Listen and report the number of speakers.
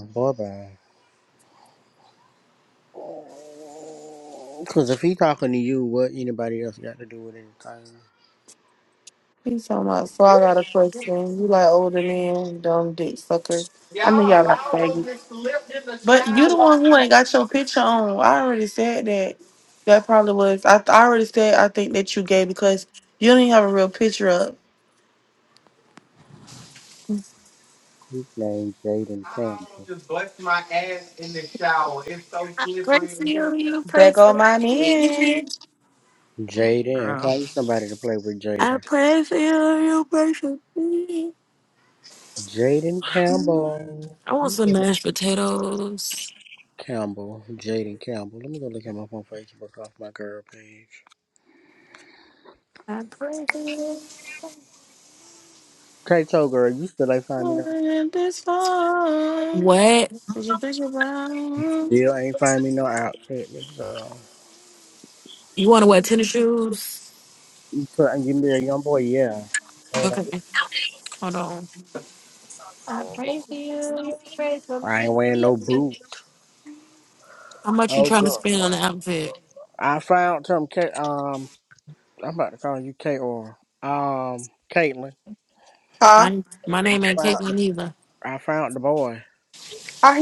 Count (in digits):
4